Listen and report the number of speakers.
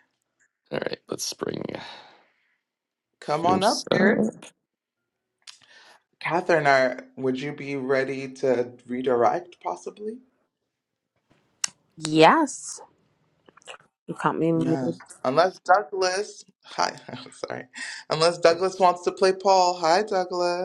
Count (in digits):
3